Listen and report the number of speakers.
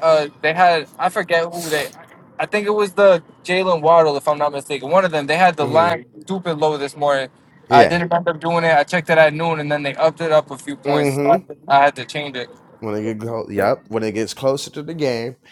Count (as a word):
two